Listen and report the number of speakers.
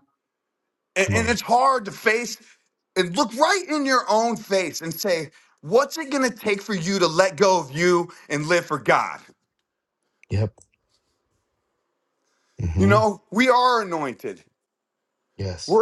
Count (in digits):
2